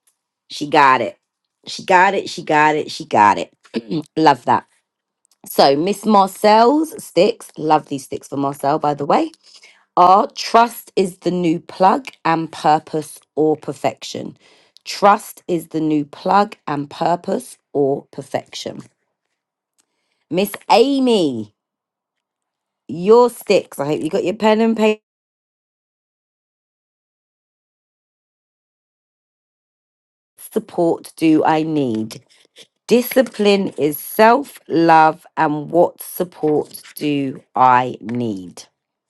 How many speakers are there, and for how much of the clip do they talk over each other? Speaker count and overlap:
1, no overlap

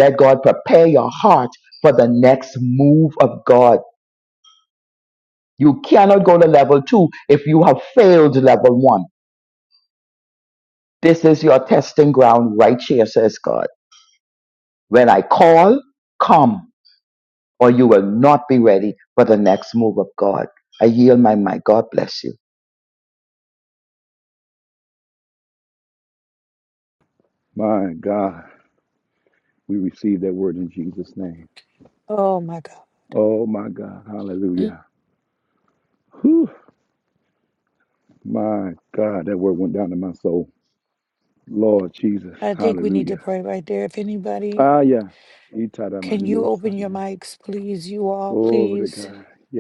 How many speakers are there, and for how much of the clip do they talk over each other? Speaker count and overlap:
3, about 6%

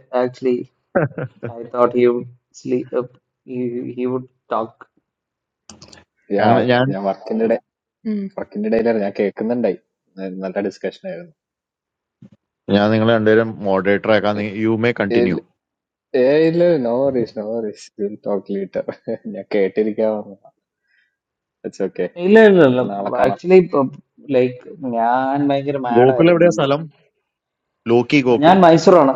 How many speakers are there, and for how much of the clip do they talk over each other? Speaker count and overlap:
3, about 7%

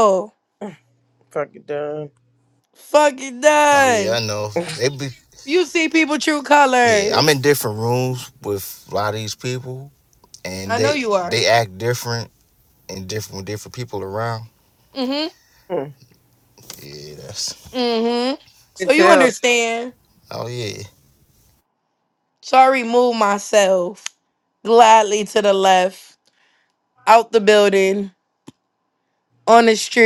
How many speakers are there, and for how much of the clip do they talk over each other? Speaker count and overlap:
3, about 6%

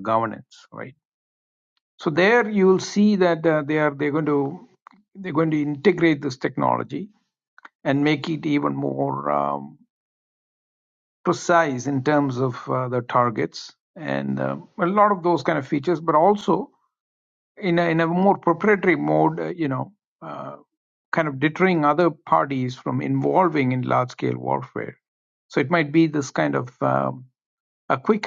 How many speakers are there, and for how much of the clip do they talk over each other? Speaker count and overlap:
1, no overlap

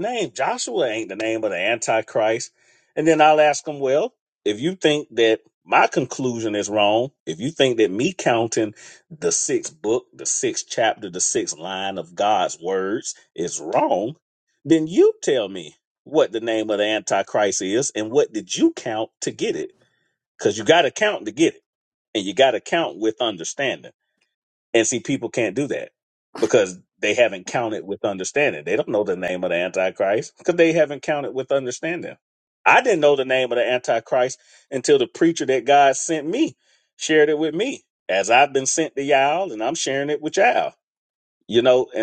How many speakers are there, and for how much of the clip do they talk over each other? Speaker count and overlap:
1, no overlap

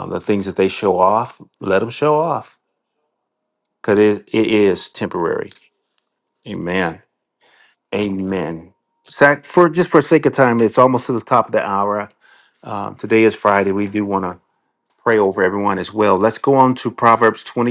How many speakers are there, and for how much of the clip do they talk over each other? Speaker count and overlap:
1, no overlap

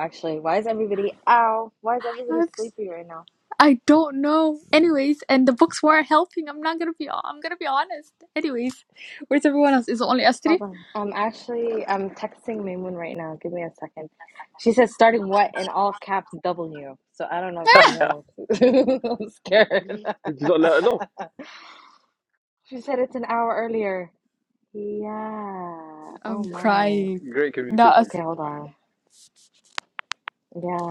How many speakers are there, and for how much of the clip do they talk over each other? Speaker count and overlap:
3, about 6%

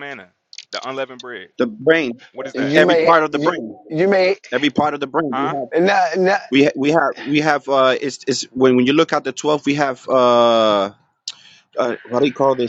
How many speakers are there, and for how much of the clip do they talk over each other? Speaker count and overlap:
3, about 10%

